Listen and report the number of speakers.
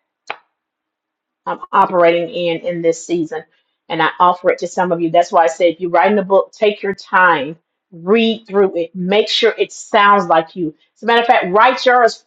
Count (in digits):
1